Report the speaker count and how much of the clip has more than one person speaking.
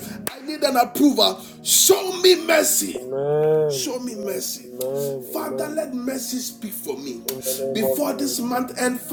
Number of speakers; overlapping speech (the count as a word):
two, about 19%